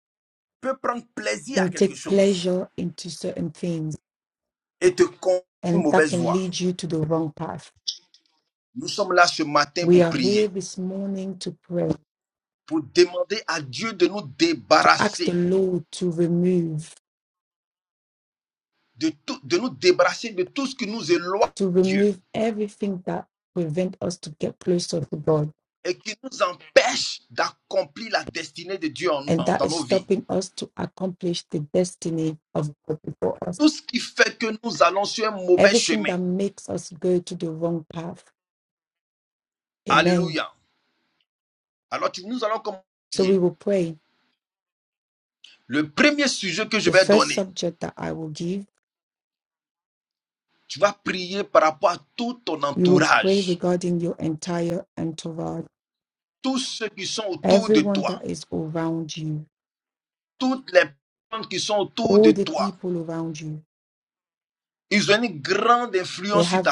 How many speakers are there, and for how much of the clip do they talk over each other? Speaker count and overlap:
two, about 12%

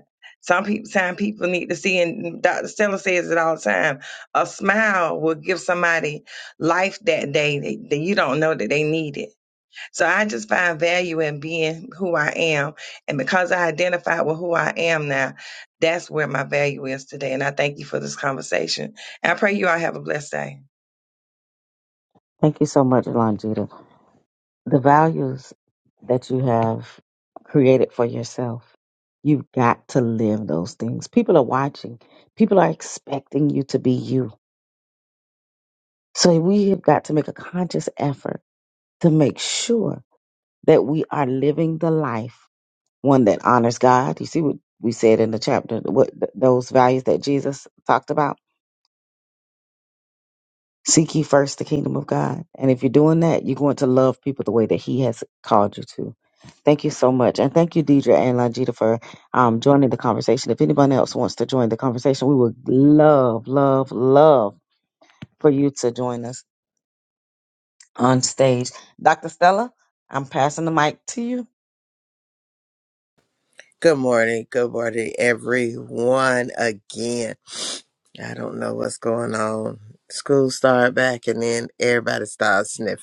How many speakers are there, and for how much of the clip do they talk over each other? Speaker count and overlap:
three, no overlap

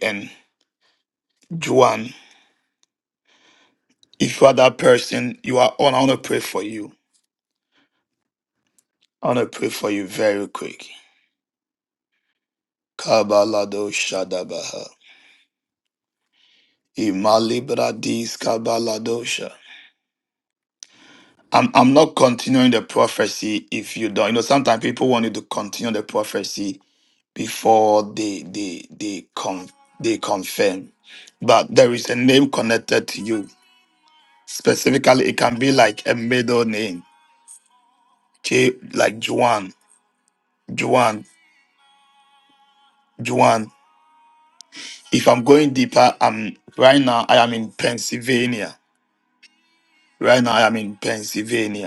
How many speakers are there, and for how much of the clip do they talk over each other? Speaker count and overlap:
one, no overlap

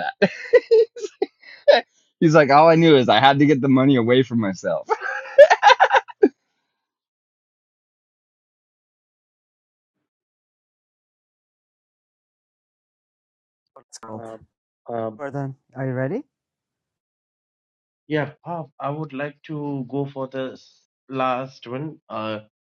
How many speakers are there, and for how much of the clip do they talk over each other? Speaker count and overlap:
three, no overlap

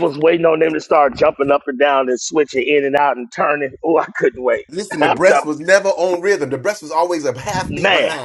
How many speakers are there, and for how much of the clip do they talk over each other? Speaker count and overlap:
two, about 14%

